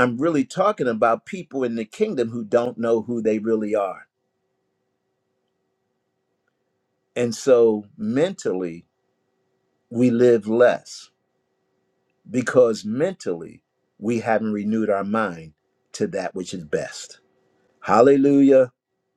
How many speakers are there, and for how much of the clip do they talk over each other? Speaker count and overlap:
1, no overlap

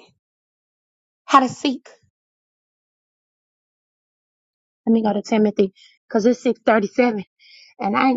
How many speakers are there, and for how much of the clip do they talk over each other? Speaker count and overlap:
1, no overlap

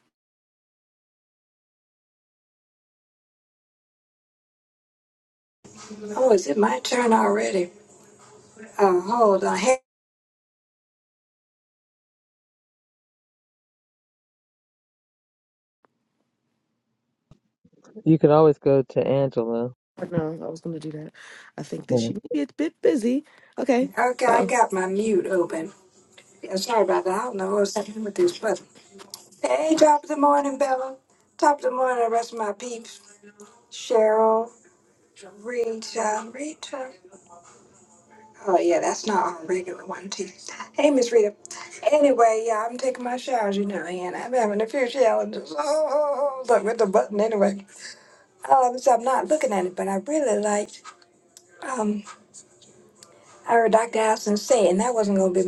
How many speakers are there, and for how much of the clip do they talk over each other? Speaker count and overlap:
3, about 1%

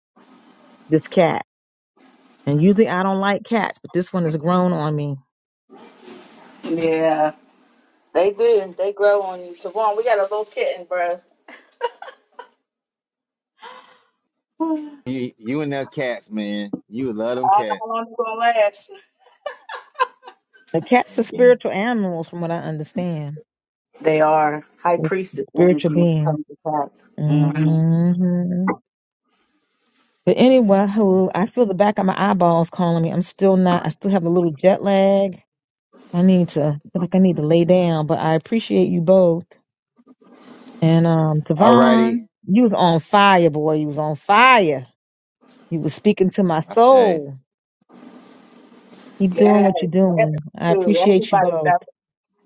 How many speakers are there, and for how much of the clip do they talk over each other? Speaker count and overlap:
3, about 10%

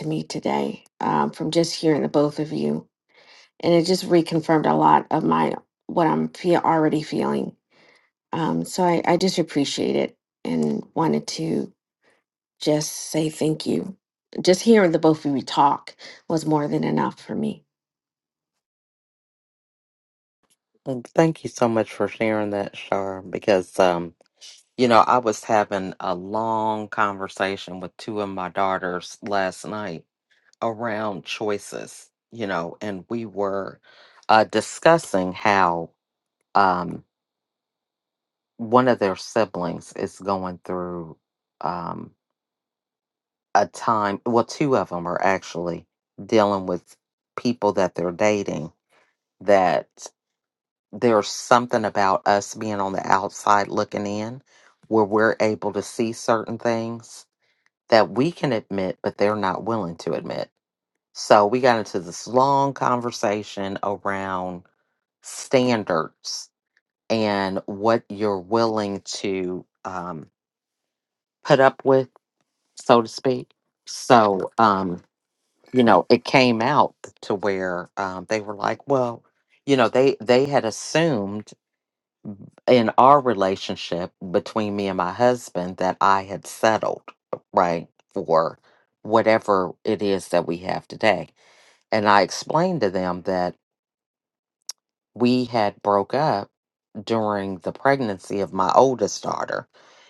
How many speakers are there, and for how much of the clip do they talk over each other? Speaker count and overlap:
2, no overlap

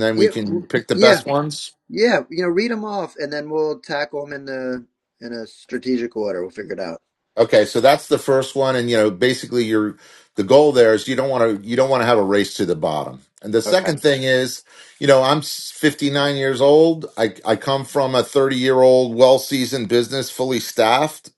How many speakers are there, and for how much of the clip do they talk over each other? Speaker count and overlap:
2, about 6%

